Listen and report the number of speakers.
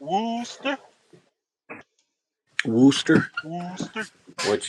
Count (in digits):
2